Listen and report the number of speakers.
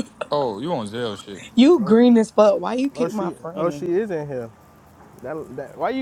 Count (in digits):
3